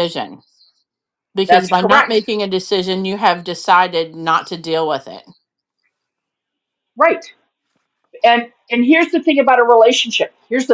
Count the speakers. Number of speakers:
two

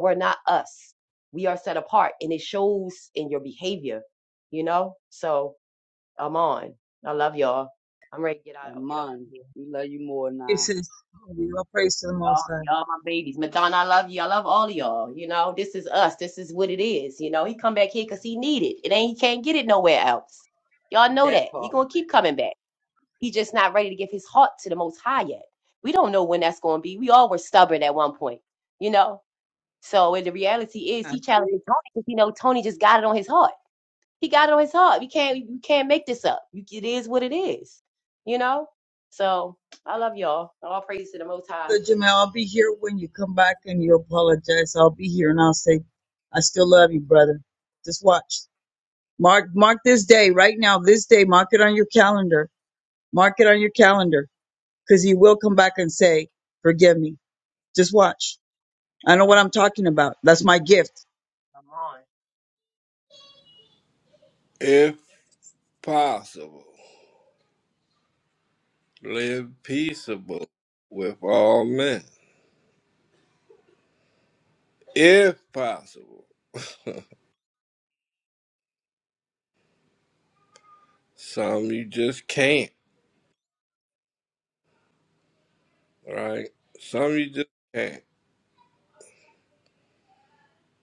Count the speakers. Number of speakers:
four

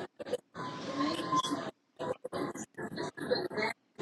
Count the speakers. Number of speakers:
zero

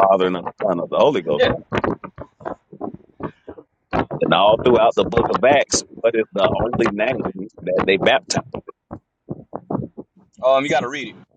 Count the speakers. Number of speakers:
two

